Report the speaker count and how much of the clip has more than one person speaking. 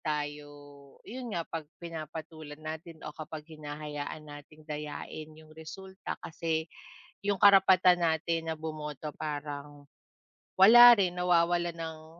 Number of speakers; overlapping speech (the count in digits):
1, no overlap